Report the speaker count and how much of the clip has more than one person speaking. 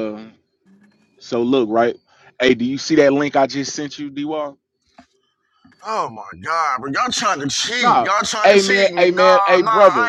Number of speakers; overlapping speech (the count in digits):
2, about 20%